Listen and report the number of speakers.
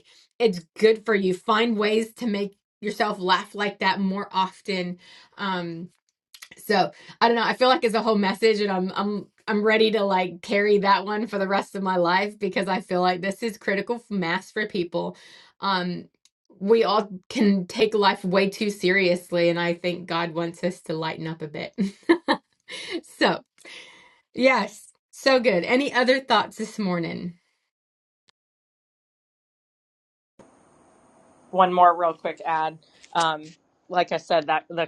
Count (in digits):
2